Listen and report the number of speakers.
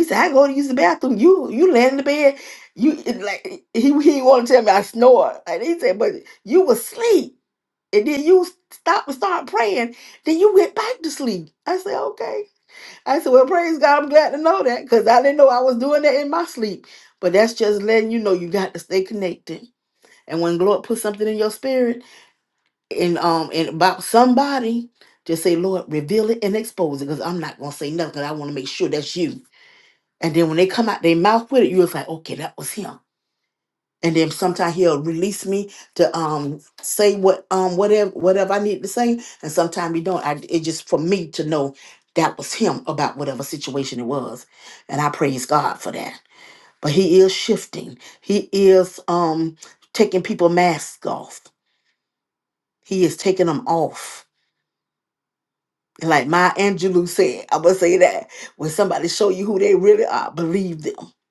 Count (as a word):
one